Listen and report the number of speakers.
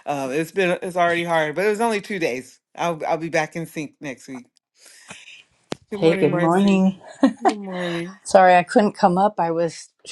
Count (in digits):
2